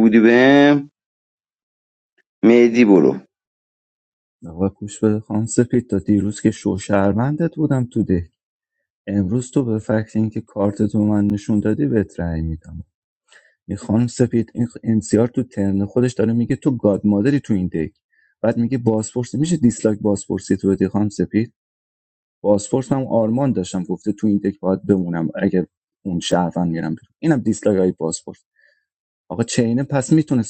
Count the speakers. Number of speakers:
2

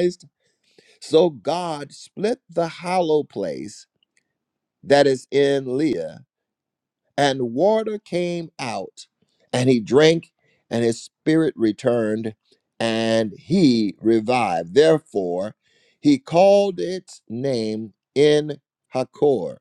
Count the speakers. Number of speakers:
1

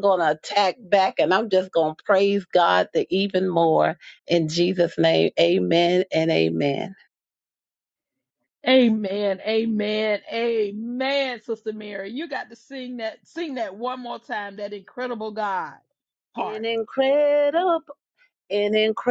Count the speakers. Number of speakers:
2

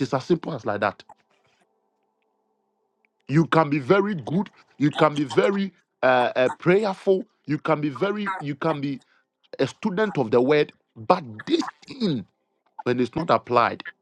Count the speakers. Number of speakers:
1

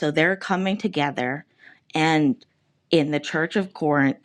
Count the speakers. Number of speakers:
1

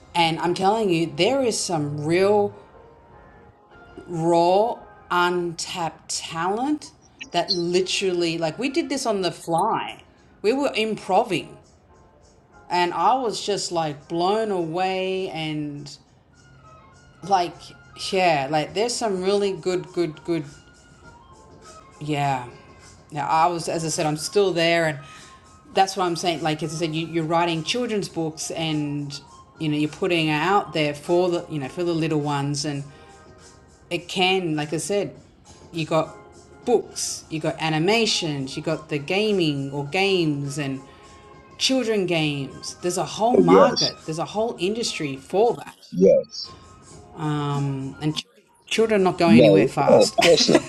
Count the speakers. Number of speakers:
2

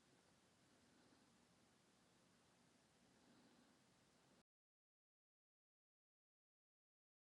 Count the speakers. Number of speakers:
0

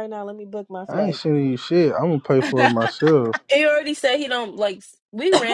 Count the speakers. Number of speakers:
3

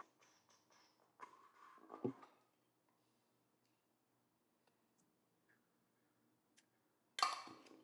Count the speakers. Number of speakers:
0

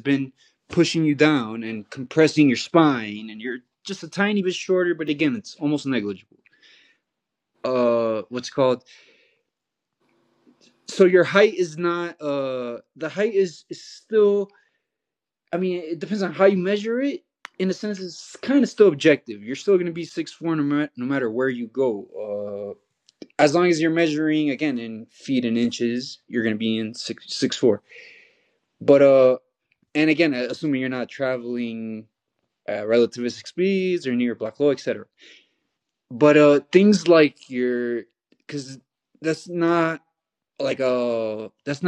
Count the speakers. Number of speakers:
1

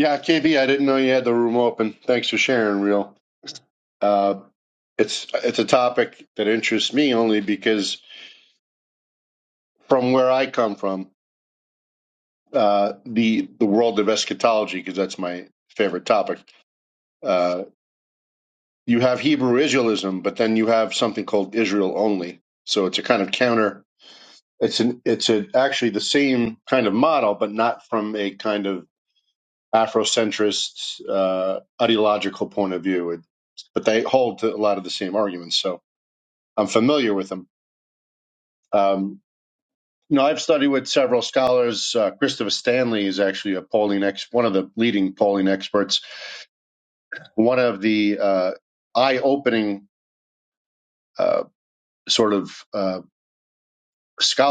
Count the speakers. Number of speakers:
1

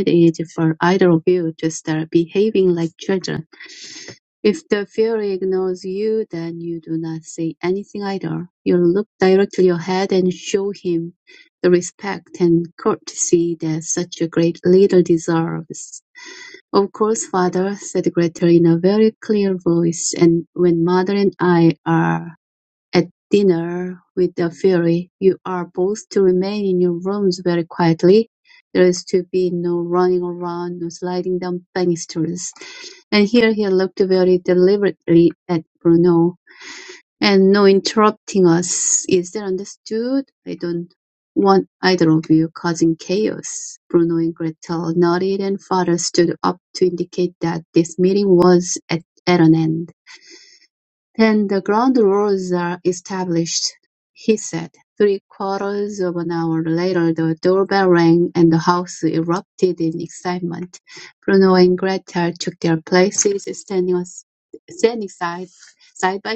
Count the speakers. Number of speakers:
1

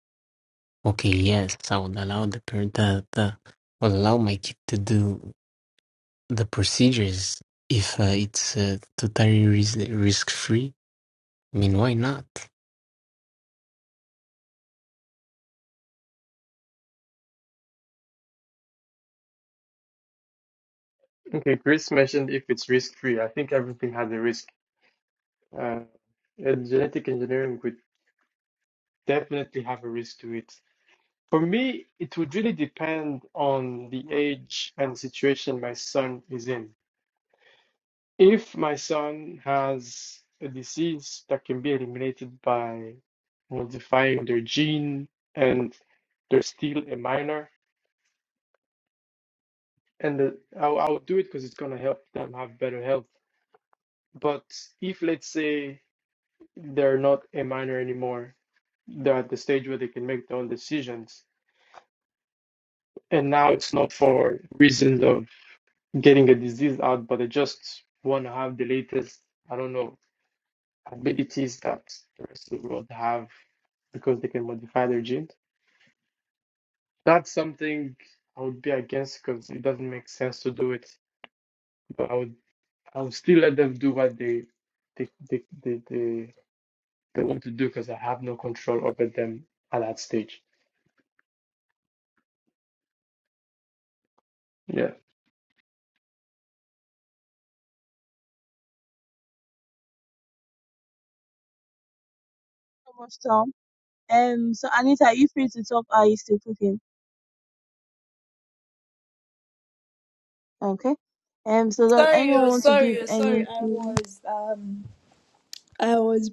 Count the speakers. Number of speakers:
4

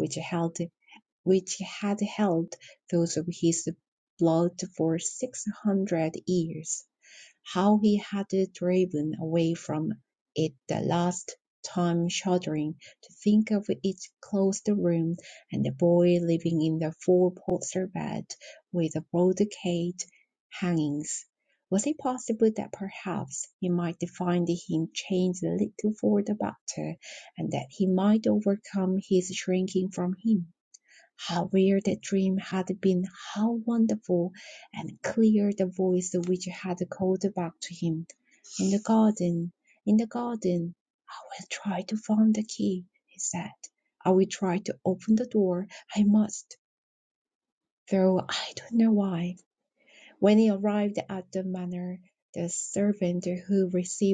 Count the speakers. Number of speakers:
1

